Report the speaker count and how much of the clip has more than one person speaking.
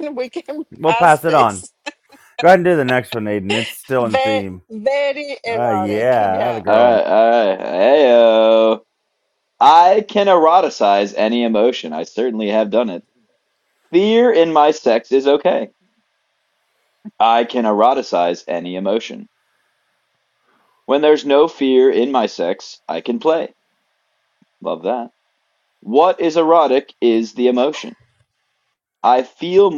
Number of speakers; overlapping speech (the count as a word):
three, about 10%